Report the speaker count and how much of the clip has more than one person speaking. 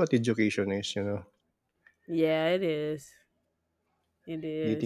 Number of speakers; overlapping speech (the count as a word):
two, about 4%